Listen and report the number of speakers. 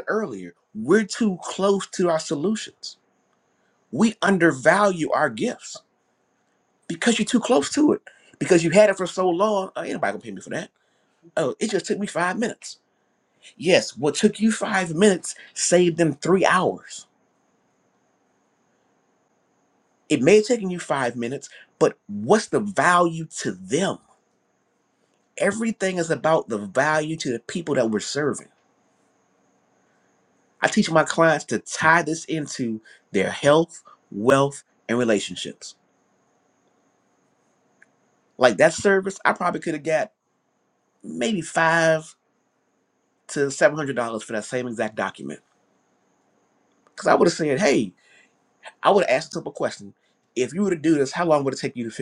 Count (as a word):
one